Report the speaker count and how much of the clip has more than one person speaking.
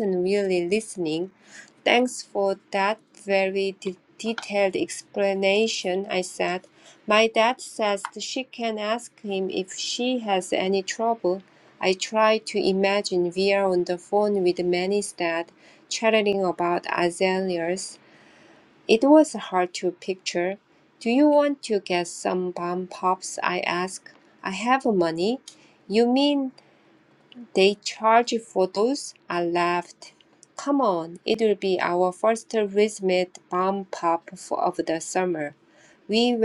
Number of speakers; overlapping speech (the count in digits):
1, no overlap